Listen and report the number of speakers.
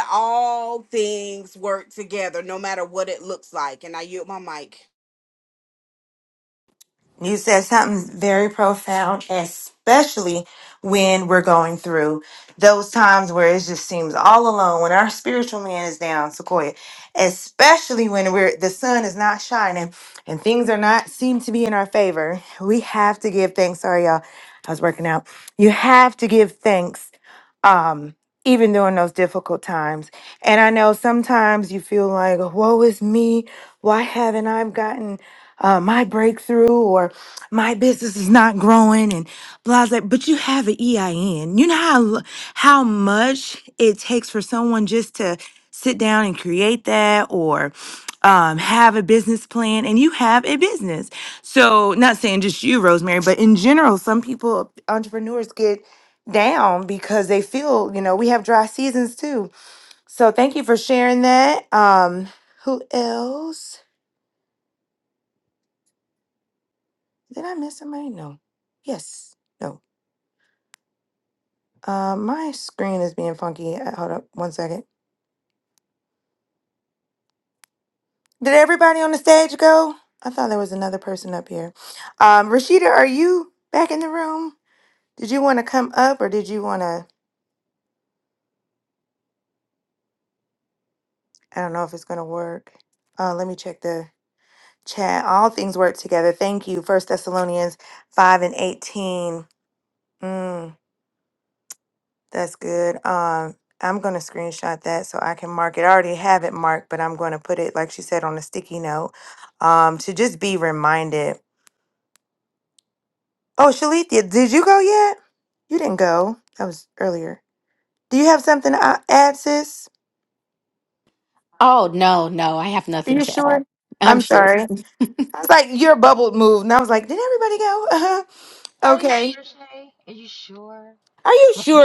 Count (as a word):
four